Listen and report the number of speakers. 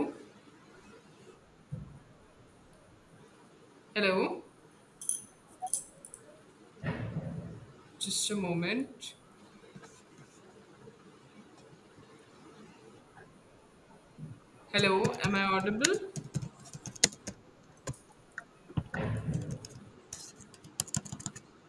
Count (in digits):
1